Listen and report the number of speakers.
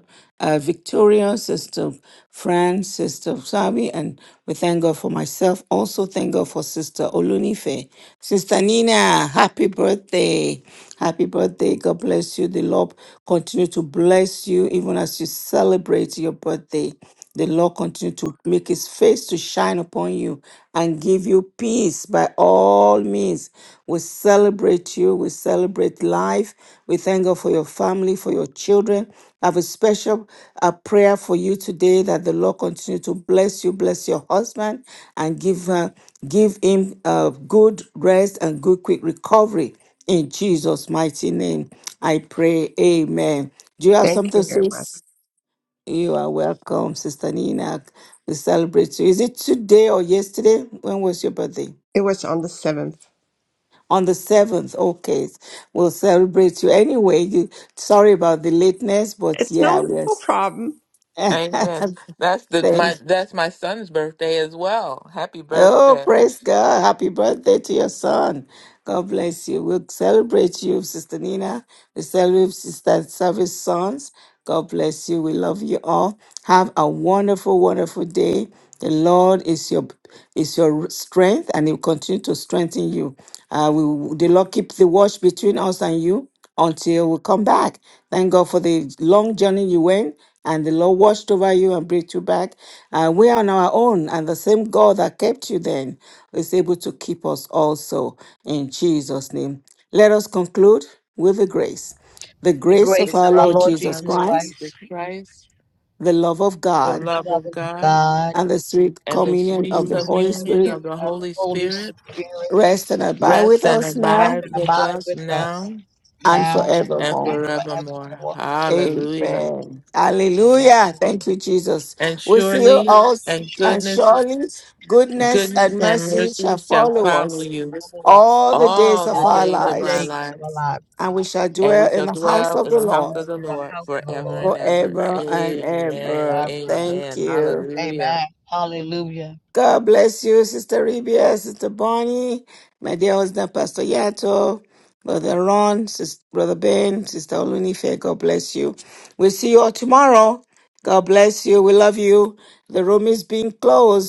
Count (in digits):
4